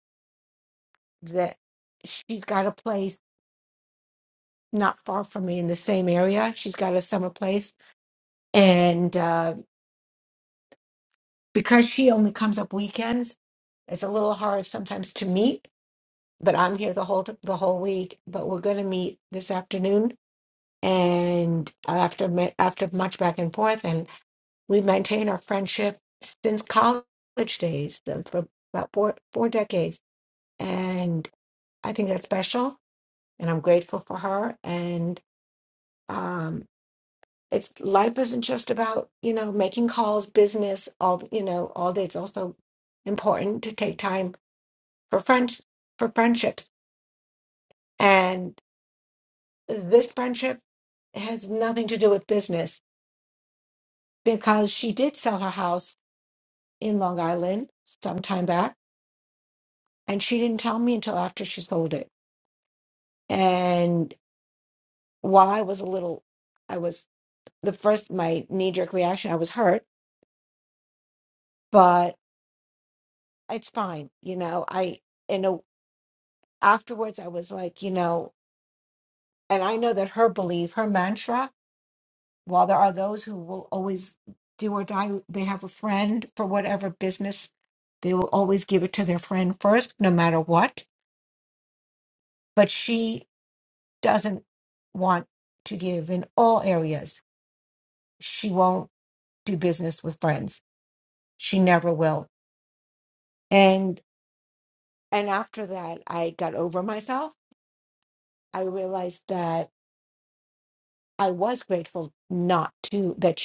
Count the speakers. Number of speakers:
one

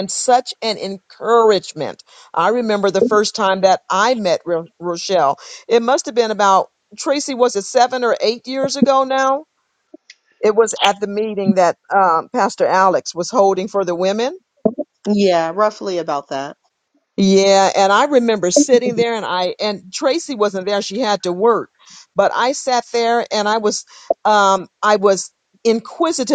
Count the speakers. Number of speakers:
two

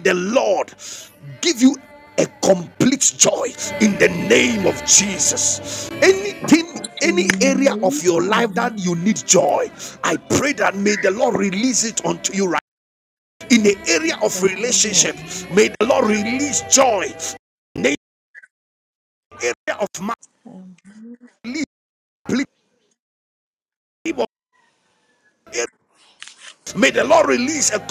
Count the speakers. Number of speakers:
two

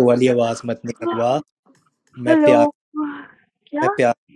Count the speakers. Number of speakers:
two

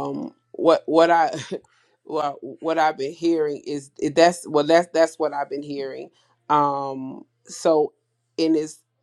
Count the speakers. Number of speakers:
one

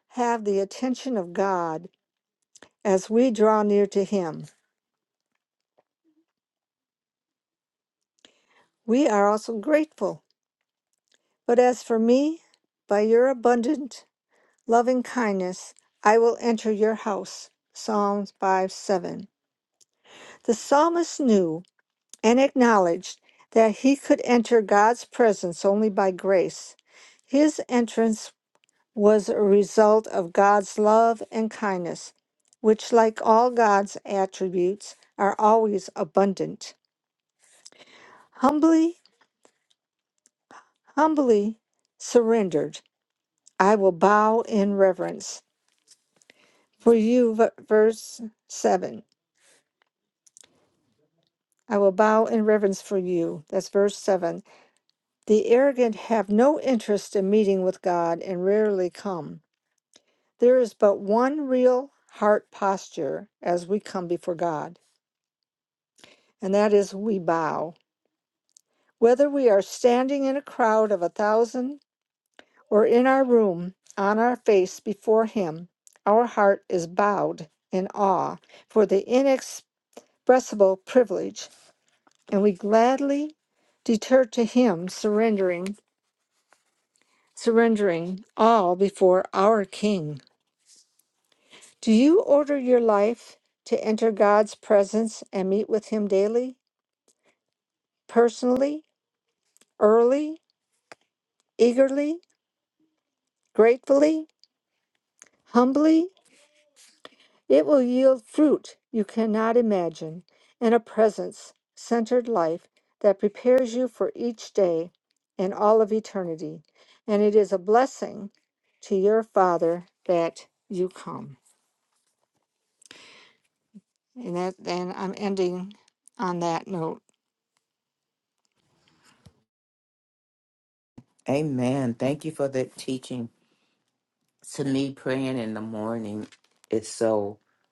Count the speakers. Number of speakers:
two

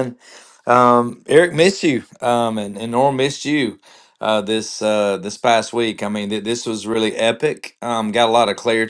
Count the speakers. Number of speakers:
one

